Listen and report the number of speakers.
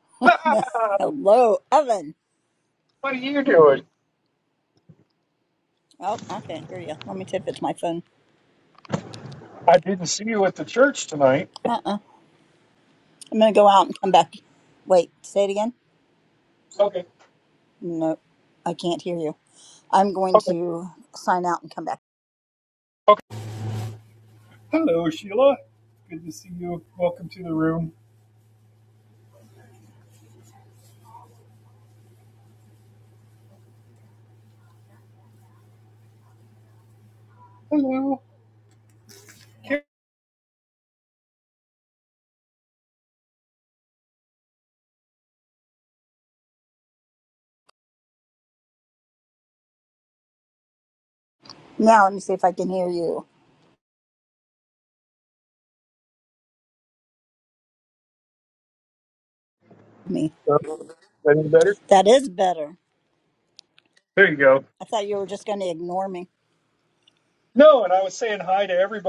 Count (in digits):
2